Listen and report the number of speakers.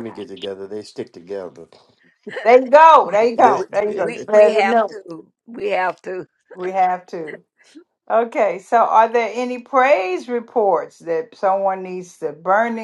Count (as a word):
three